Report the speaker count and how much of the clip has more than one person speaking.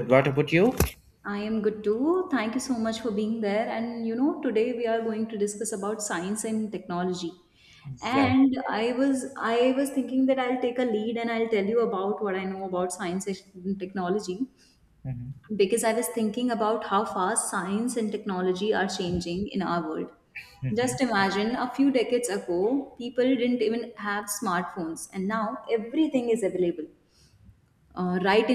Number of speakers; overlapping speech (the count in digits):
2, about 1%